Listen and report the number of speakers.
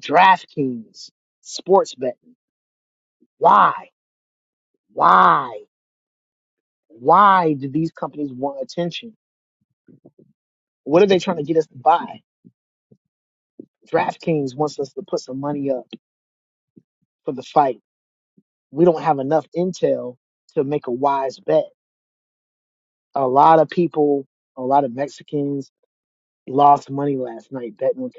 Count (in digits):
1